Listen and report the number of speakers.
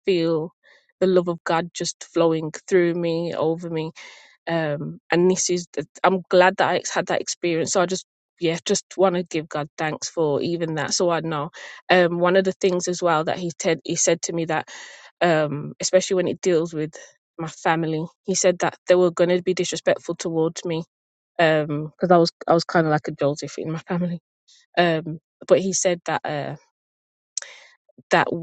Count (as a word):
one